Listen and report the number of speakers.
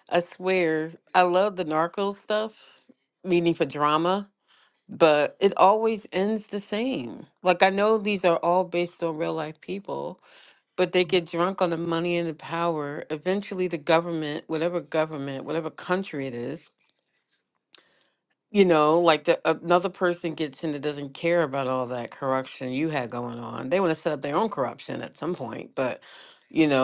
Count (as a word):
one